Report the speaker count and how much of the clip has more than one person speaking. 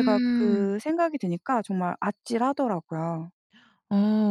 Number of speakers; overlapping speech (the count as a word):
two, about 17%